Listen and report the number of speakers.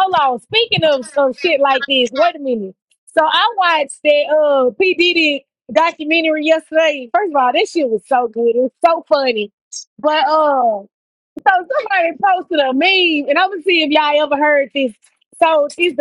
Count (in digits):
1